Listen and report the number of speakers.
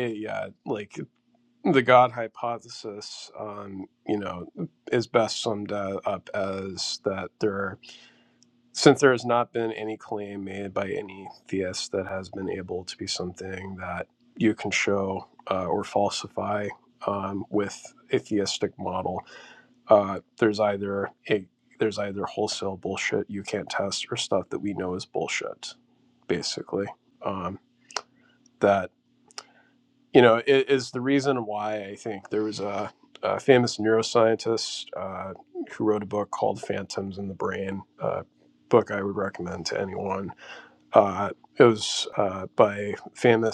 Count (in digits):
1